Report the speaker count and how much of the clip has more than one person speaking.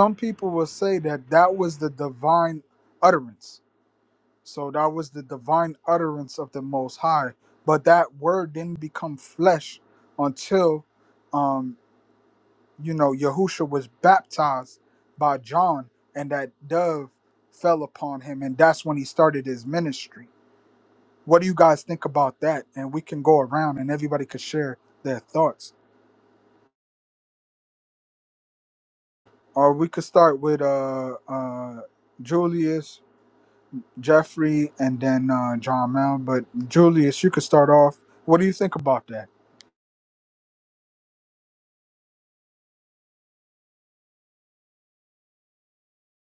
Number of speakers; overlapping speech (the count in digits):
1, no overlap